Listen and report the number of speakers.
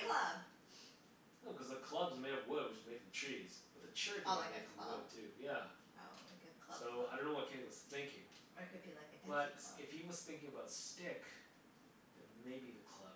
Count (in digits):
2